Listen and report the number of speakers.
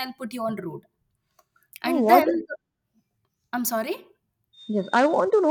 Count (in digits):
2